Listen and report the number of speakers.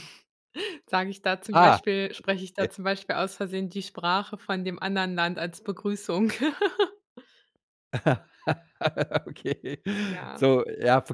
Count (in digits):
2